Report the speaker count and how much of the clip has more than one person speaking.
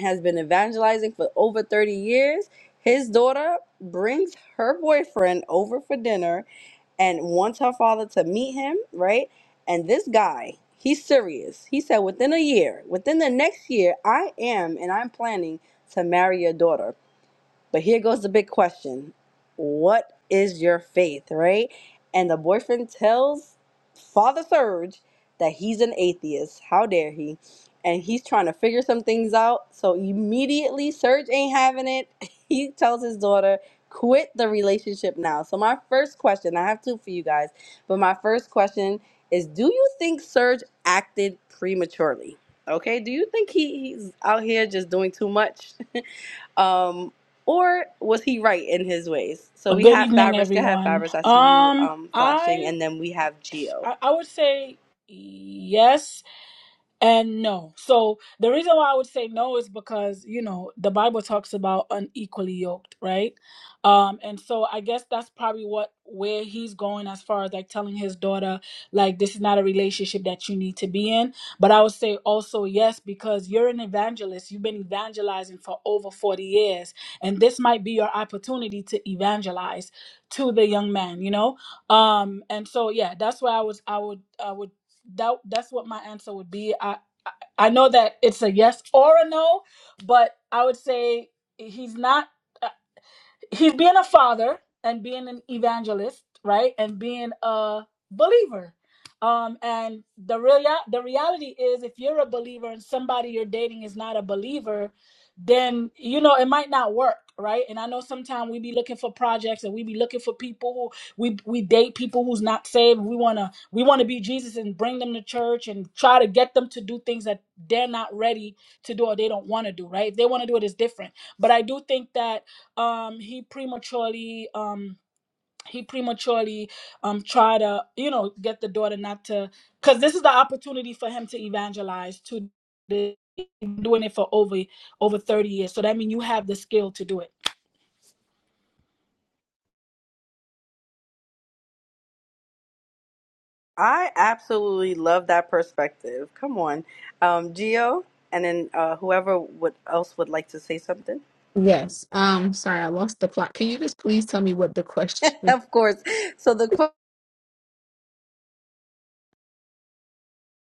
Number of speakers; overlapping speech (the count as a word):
three, about 2%